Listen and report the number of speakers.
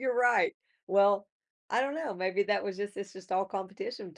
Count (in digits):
1